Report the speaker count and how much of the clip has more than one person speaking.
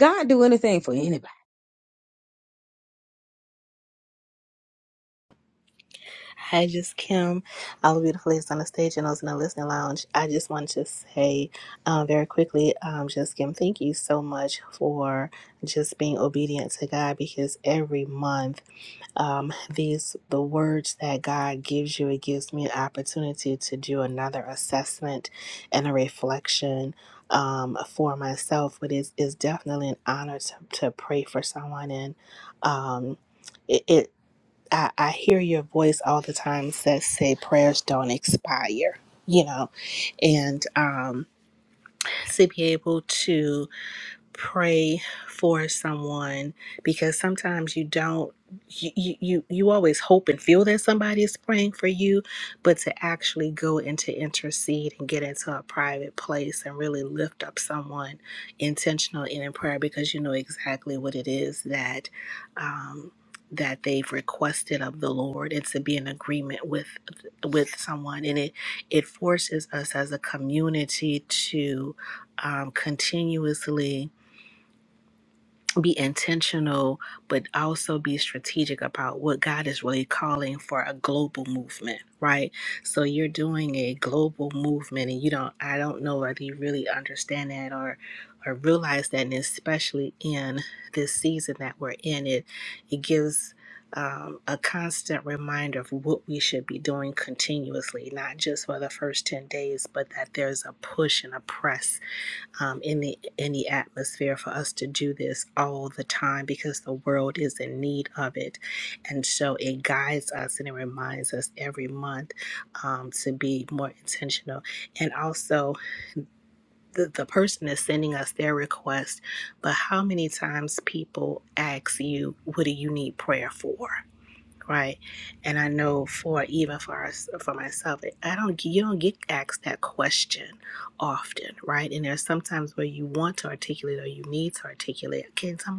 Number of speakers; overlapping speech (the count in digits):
2, no overlap